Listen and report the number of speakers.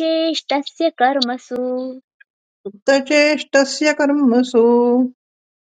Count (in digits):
2